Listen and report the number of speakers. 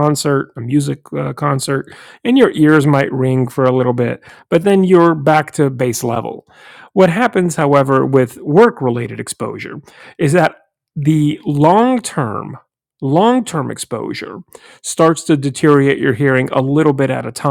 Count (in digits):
1